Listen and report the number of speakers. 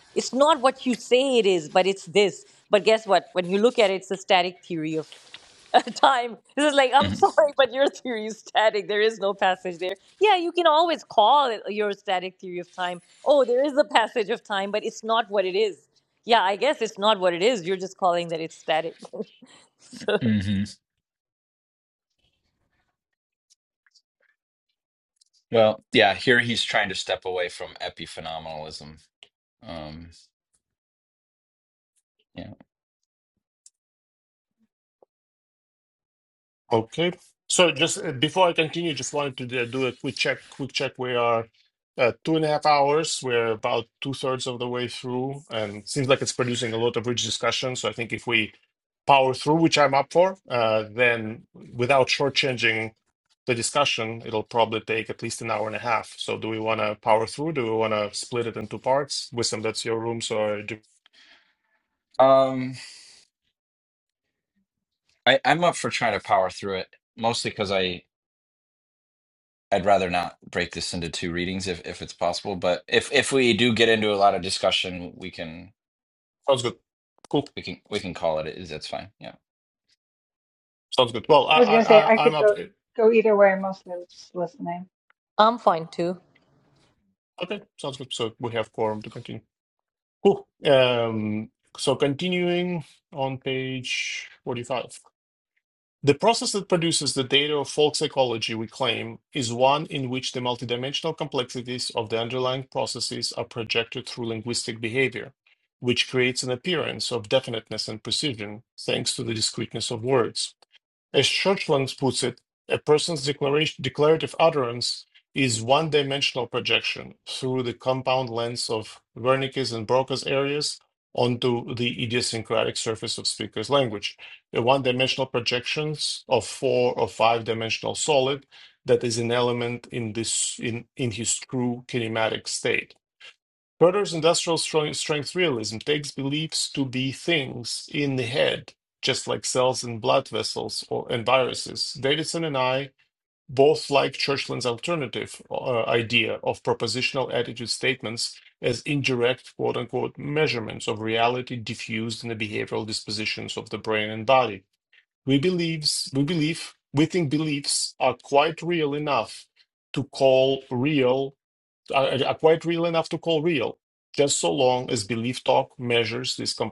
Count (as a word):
four